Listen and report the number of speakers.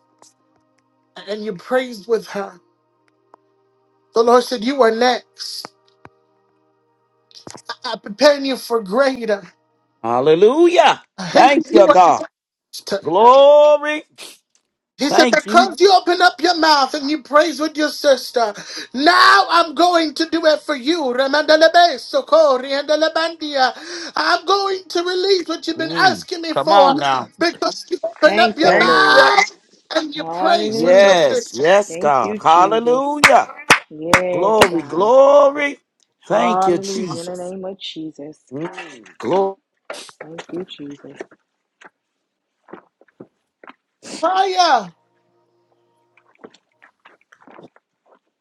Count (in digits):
3